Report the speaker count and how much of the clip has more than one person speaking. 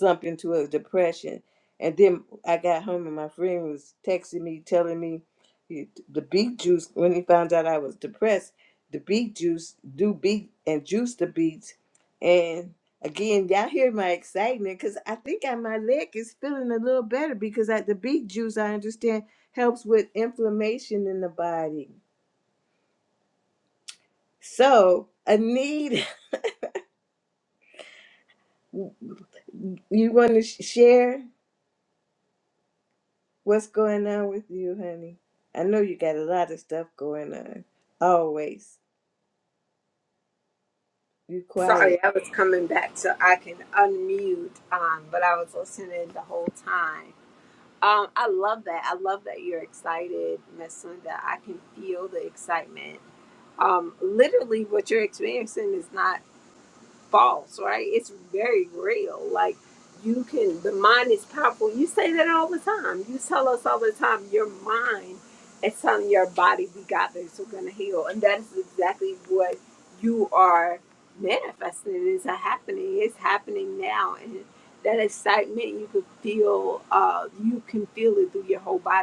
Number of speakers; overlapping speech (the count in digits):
2, under 1%